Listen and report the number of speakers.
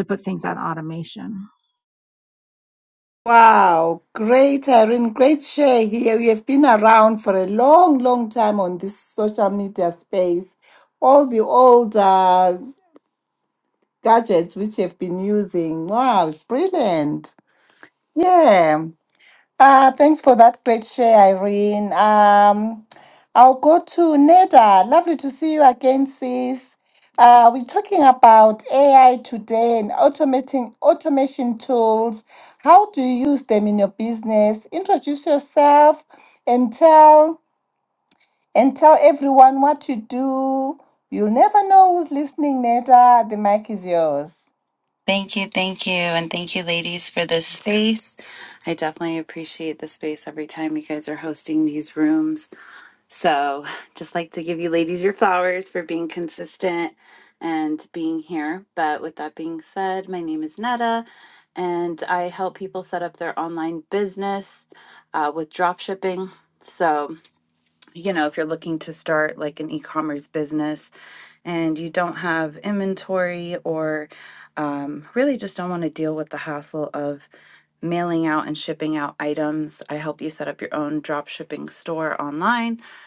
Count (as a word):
three